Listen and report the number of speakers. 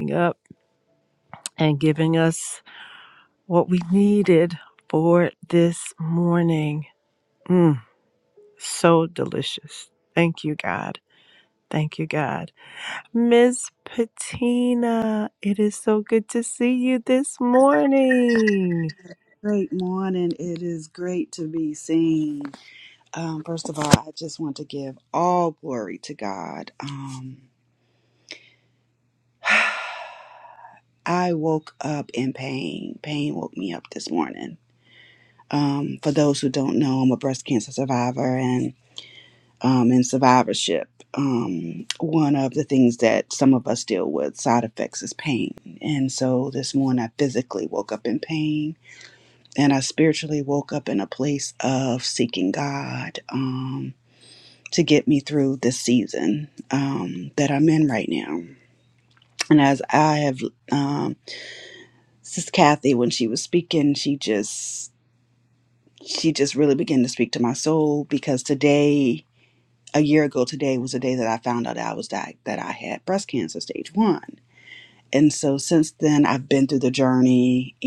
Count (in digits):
2